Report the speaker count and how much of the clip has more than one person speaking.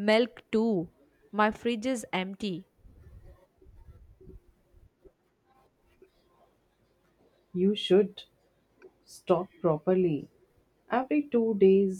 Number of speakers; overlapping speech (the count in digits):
2, no overlap